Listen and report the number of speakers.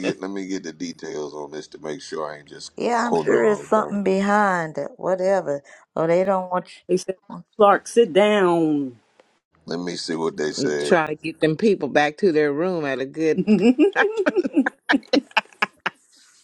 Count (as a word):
four